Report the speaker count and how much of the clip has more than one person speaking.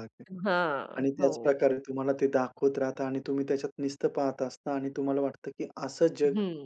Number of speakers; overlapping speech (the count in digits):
2, about 11%